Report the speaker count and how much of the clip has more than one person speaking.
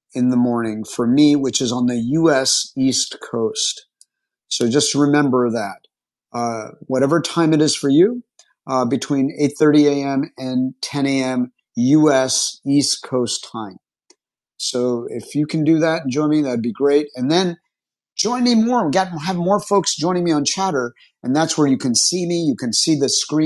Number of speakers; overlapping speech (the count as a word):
one, no overlap